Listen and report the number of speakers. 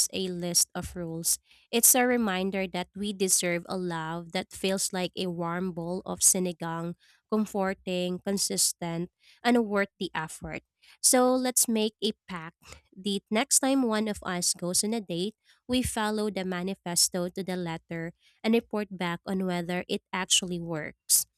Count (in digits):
1